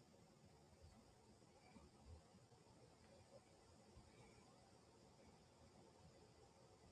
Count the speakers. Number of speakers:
0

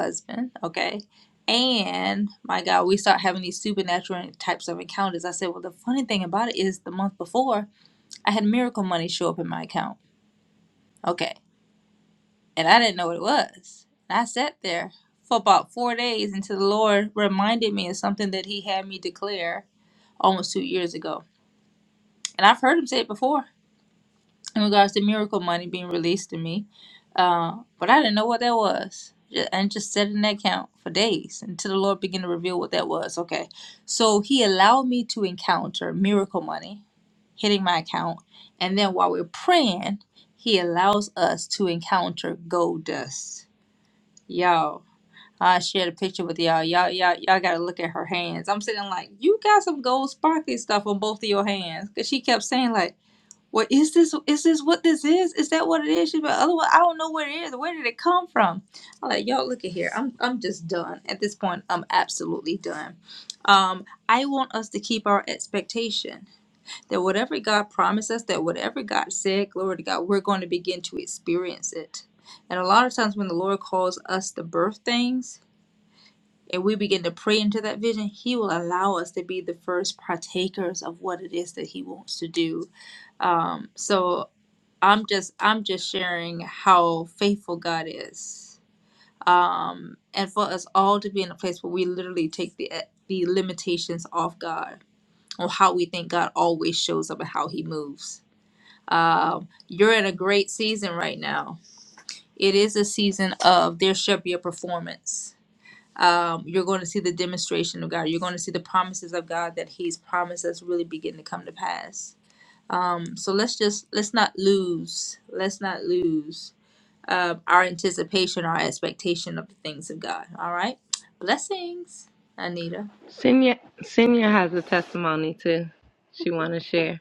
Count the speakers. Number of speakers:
2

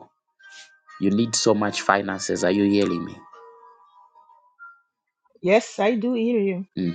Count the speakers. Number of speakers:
2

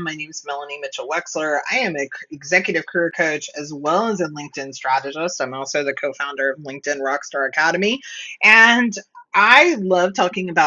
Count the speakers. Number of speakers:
1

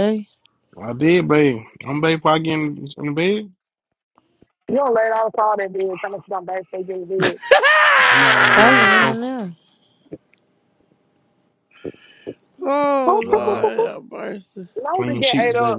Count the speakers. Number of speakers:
4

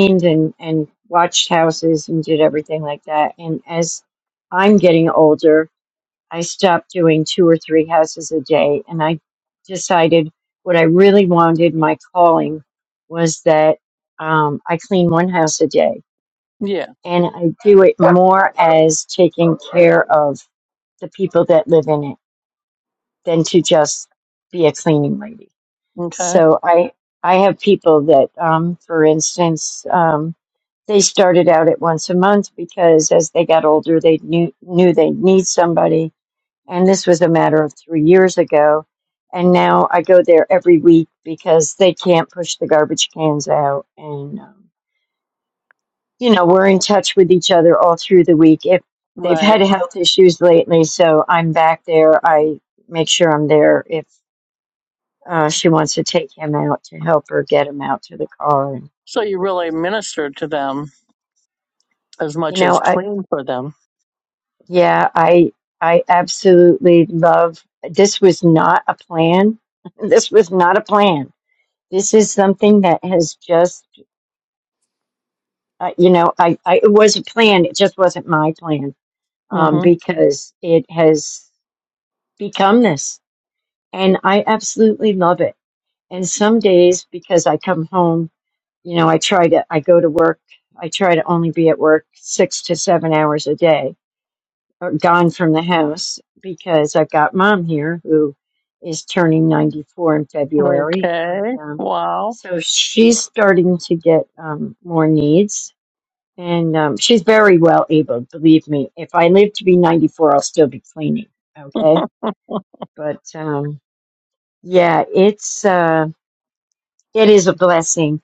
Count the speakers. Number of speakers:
2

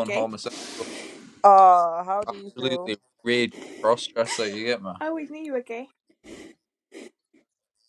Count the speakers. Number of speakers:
3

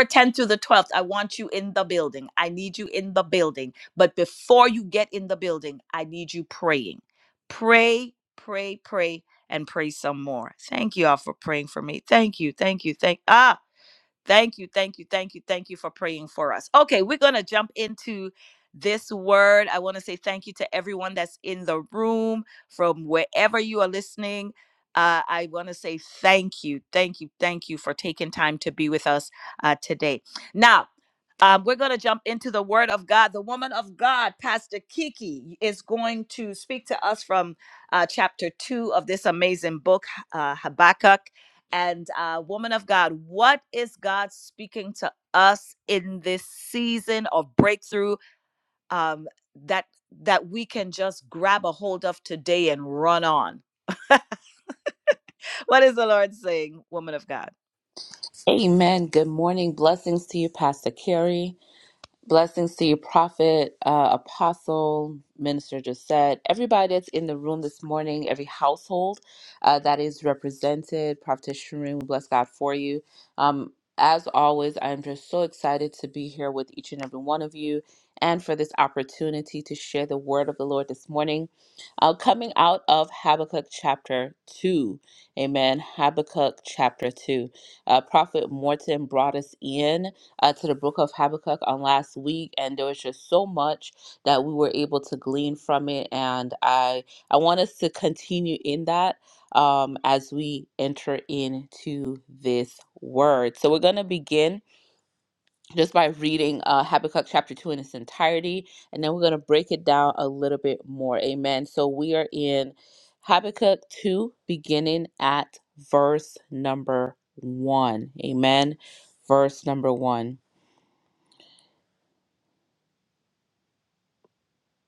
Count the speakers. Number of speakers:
2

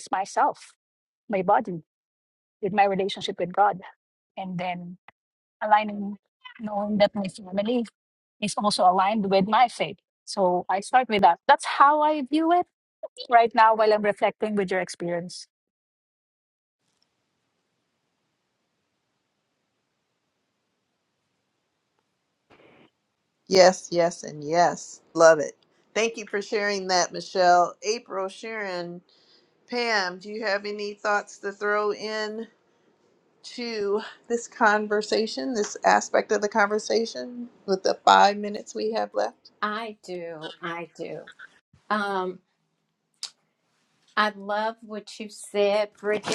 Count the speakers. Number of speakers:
3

